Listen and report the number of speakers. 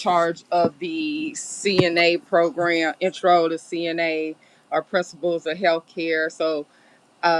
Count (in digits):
1